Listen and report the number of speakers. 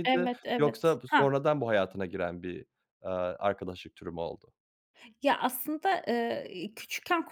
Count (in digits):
2